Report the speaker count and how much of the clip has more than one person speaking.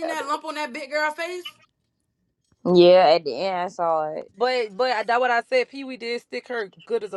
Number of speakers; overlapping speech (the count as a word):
three, about 5%